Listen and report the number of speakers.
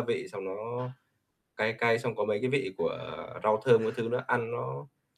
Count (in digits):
1